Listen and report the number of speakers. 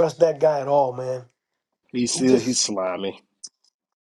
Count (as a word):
two